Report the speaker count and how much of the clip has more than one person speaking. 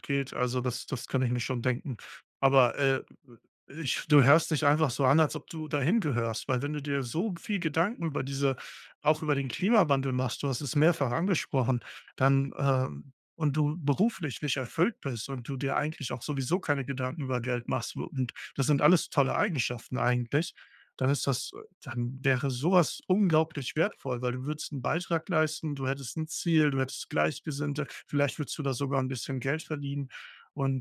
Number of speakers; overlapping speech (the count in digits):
1, no overlap